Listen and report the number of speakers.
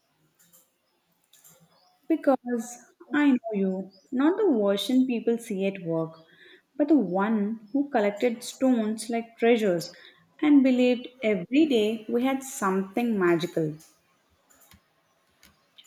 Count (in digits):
1